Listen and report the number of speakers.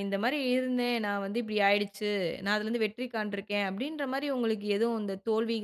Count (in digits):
1